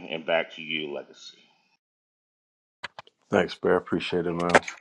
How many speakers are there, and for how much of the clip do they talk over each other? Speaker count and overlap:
2, no overlap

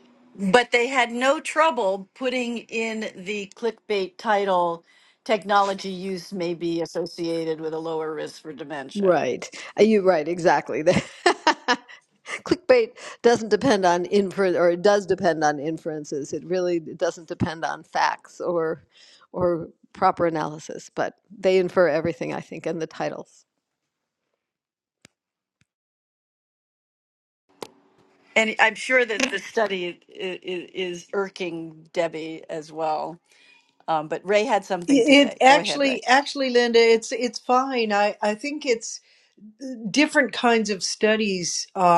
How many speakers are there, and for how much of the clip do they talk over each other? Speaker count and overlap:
3, about 3%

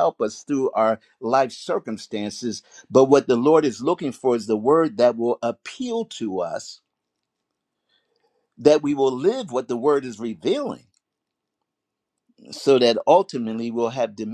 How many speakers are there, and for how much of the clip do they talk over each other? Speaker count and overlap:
1, no overlap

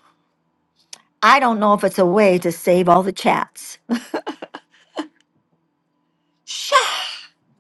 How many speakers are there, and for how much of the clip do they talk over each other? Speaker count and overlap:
1, no overlap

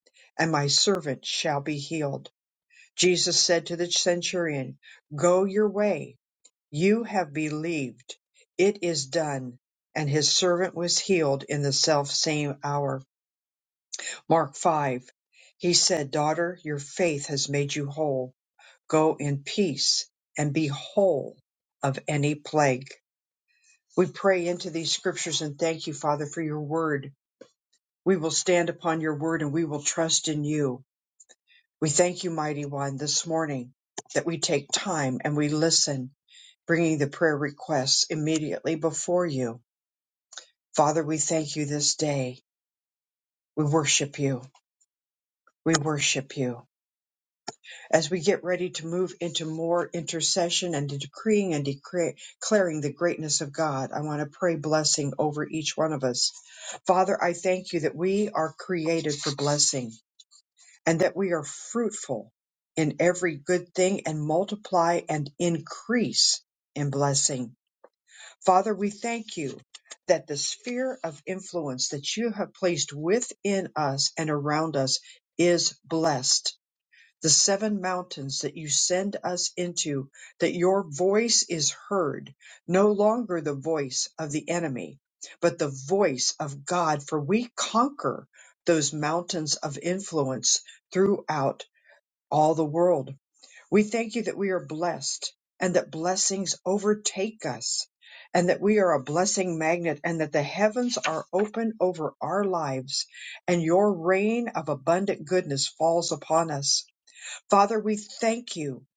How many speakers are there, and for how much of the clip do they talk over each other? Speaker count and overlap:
1, no overlap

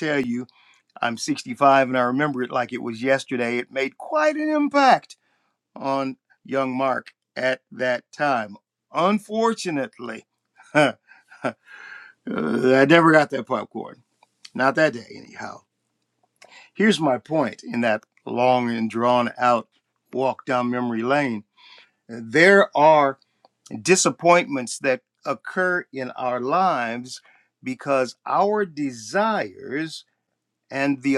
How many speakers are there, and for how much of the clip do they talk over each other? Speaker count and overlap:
1, no overlap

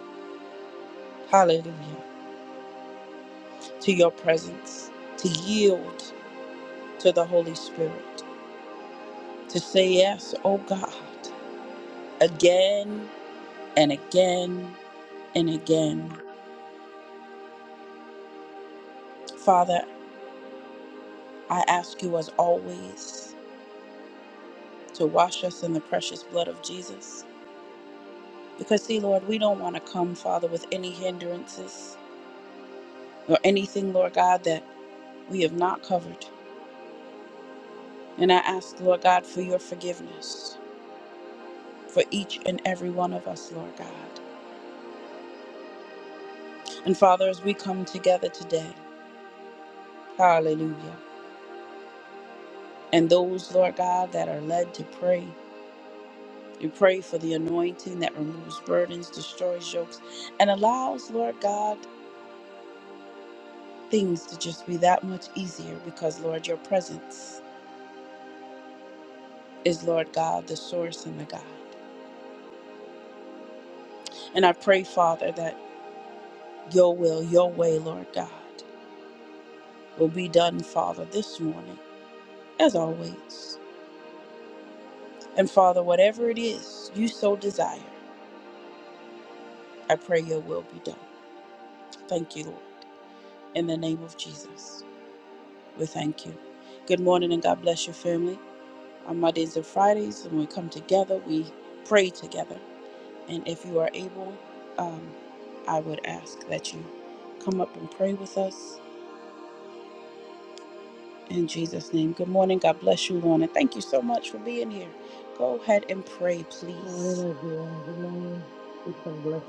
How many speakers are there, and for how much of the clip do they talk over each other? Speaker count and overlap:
2, under 1%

